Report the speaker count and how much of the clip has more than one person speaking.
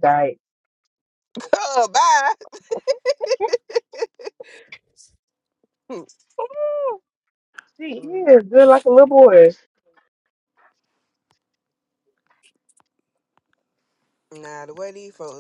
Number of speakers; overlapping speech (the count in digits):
2, no overlap